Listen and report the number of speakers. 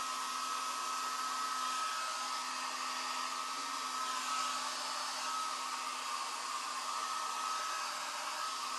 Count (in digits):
0